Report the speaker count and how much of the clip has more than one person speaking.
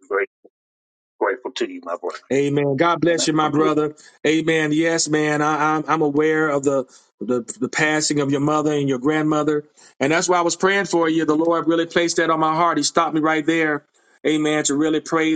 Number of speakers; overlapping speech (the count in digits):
2, about 4%